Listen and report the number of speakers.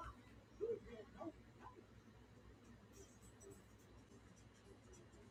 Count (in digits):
0